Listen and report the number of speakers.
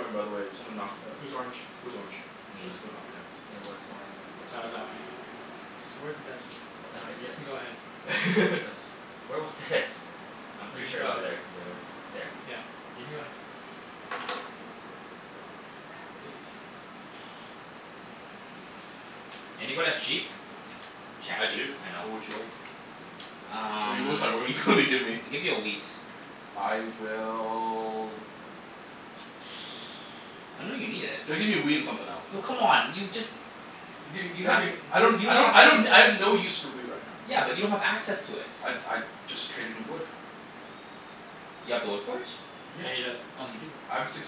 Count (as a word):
three